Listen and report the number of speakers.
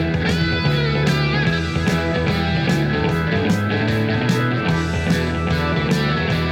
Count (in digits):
0